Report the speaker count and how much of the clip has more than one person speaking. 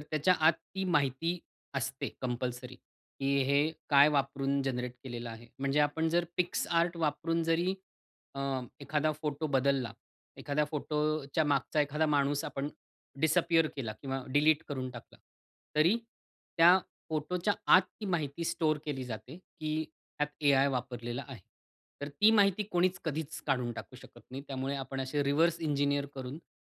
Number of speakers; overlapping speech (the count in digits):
1, no overlap